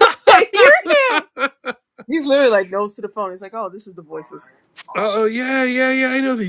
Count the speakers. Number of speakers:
three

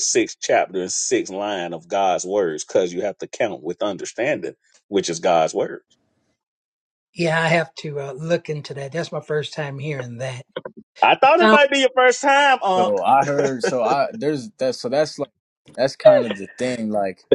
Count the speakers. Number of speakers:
three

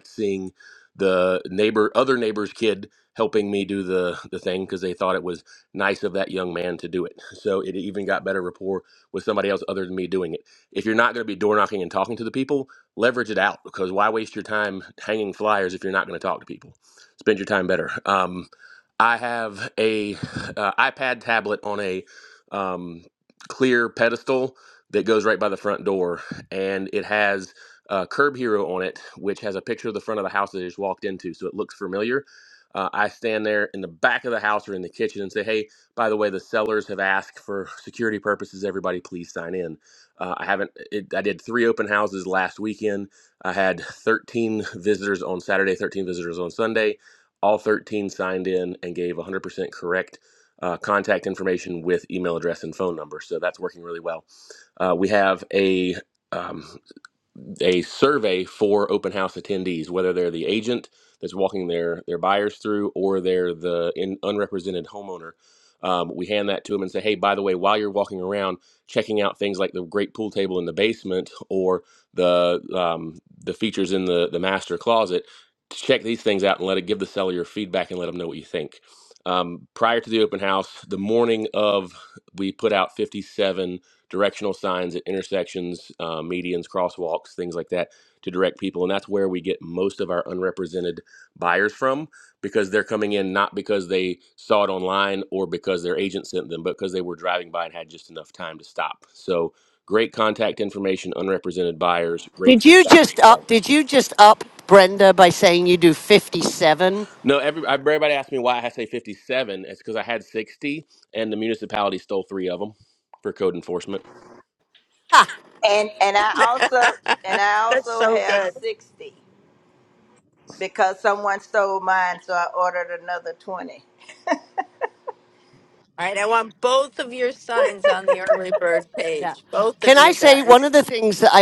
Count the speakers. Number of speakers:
four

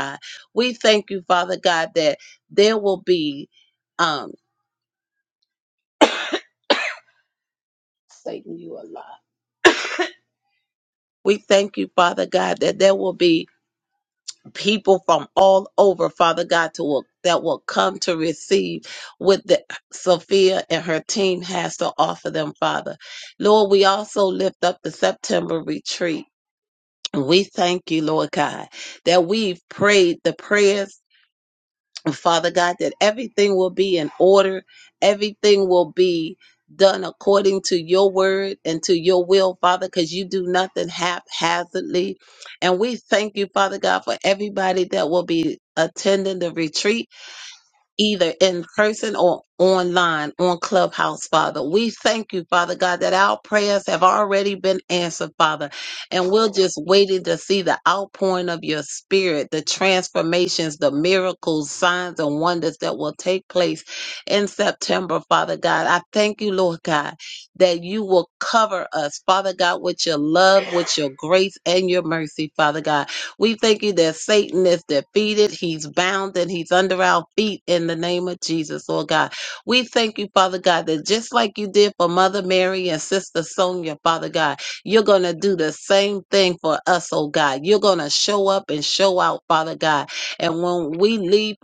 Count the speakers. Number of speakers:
one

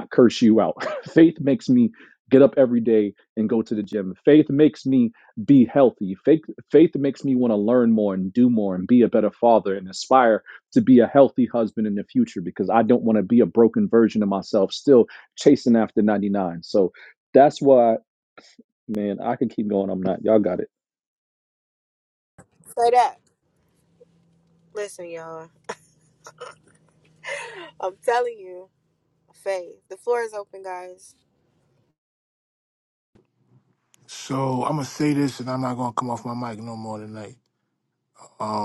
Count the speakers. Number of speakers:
three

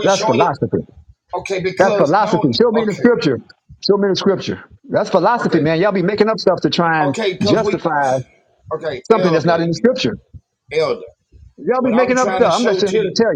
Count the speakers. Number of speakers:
two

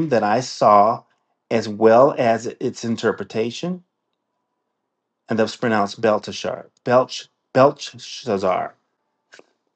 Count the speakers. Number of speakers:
one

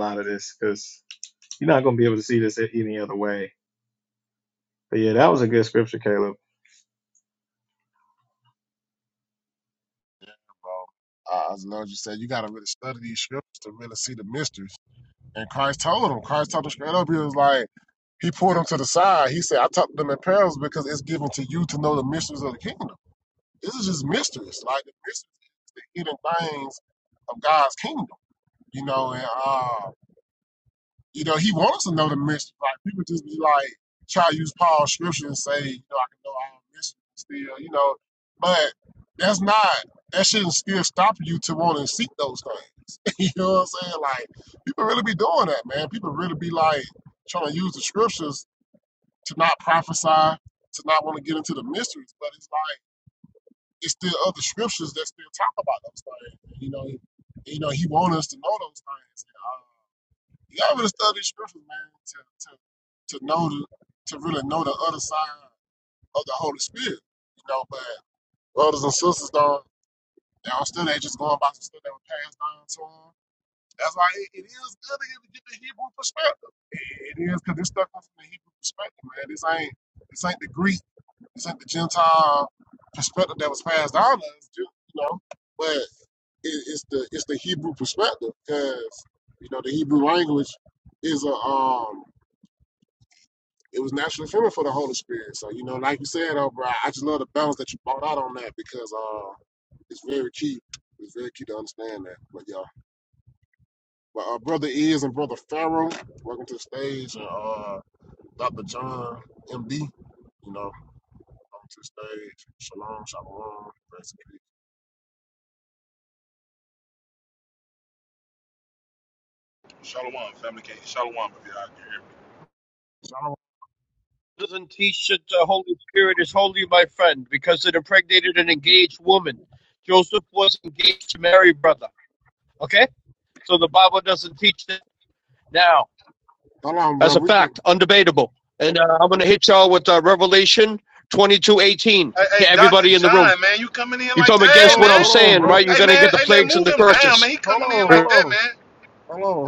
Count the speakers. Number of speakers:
four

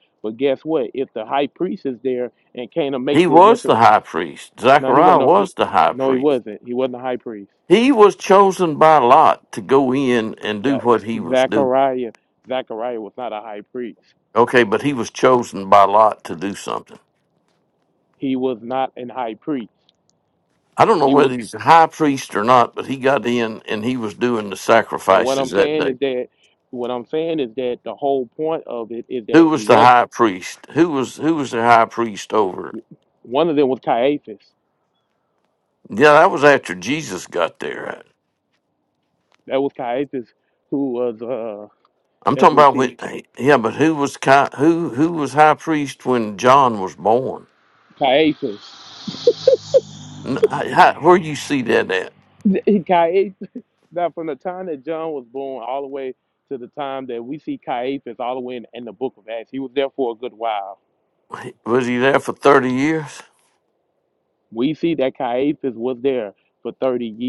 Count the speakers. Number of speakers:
two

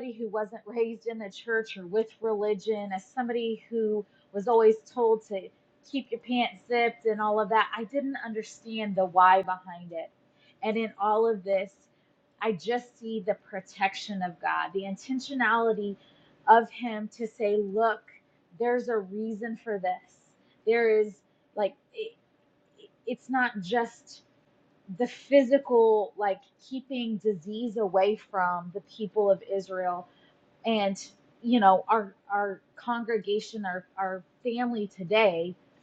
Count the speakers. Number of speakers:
one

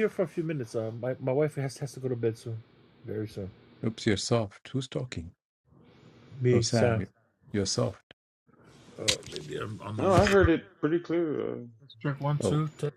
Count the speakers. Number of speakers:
three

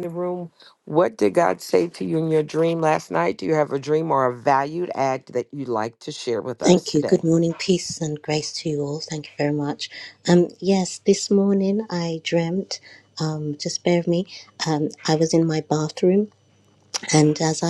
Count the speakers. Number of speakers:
two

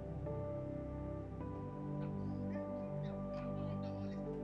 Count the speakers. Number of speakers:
zero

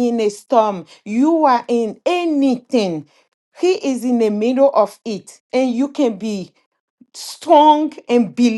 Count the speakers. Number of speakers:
one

